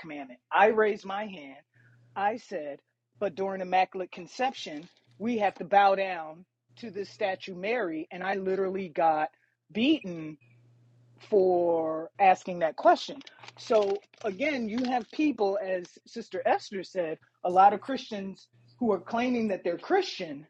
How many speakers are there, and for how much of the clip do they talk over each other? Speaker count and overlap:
1, no overlap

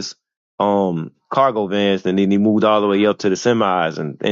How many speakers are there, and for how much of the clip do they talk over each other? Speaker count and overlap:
1, no overlap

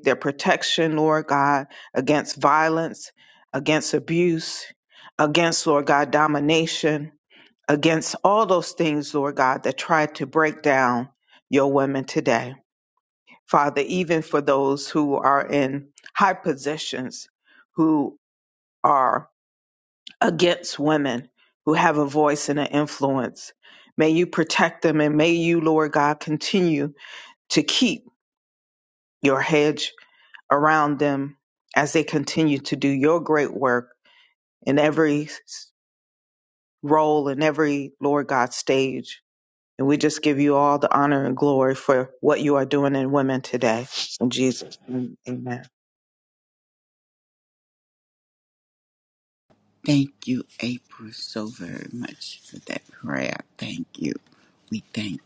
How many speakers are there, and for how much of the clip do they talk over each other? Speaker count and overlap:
2, no overlap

